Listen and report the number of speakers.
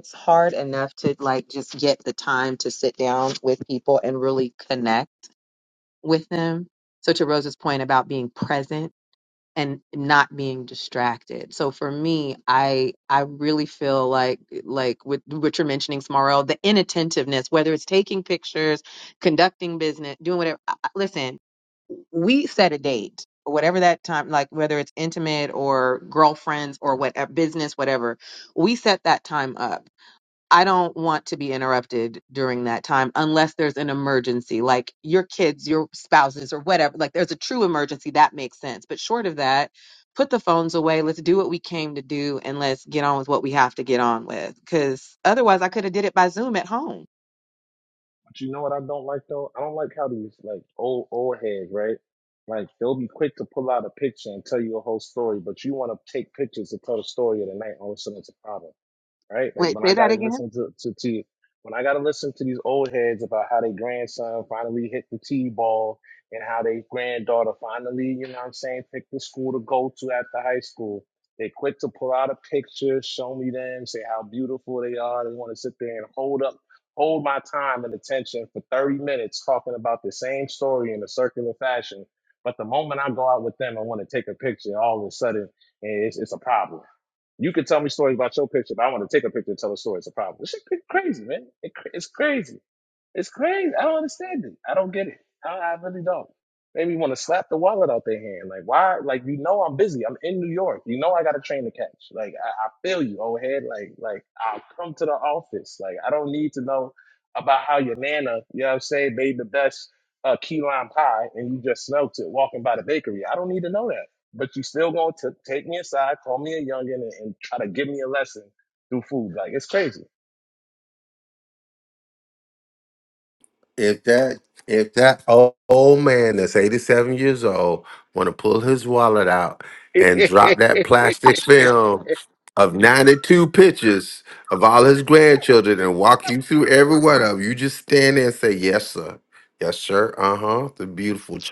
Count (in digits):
3